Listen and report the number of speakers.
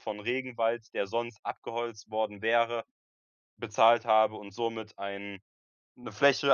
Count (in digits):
1